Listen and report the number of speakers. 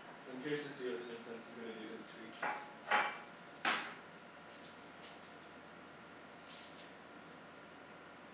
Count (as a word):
one